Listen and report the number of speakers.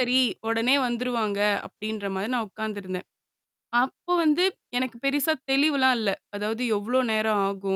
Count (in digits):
1